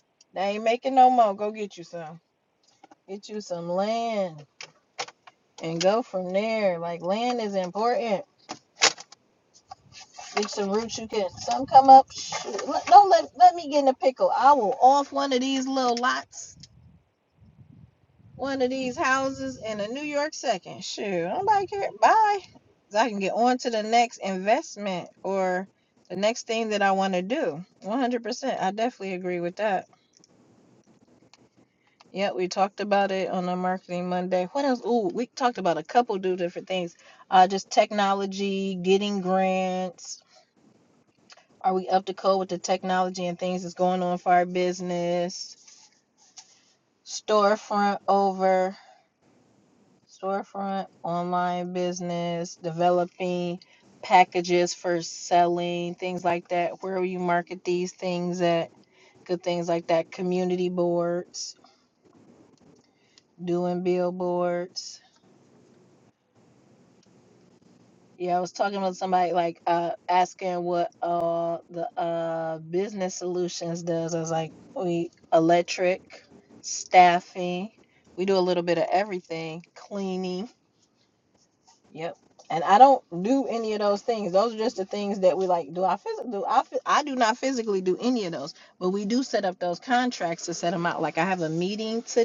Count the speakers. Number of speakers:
one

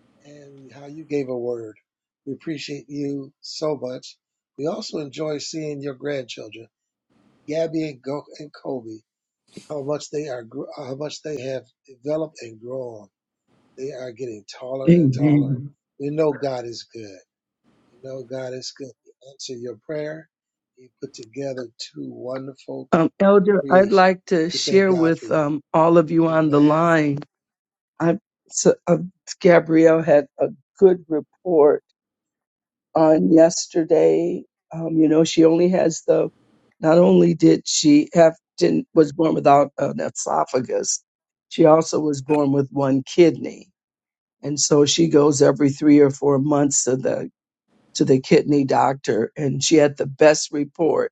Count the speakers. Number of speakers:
two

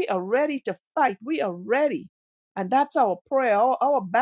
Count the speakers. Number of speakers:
one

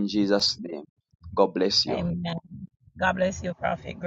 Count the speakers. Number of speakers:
two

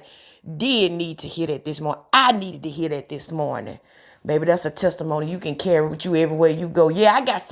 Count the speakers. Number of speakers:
one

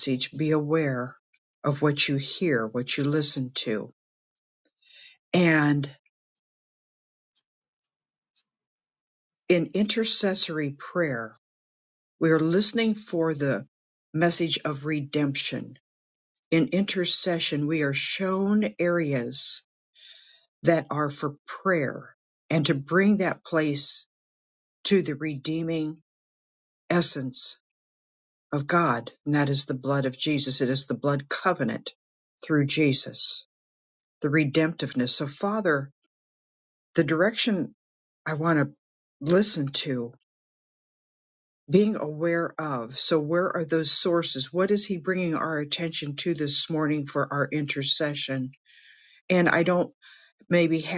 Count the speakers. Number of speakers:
one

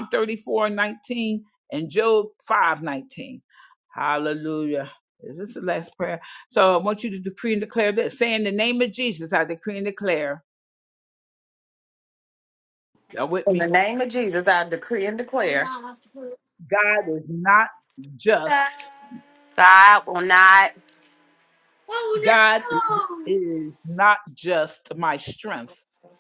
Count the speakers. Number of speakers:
three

